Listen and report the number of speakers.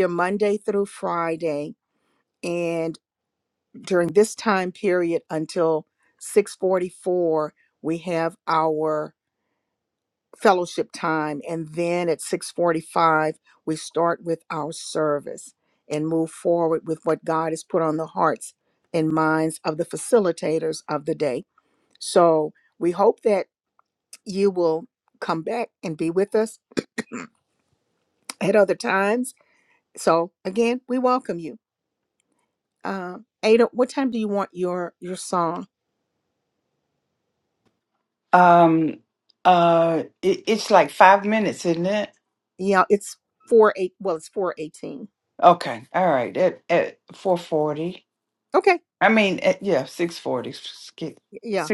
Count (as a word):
two